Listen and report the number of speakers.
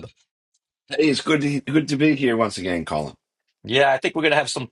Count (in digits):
2